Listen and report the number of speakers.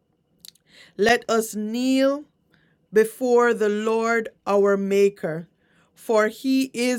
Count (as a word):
one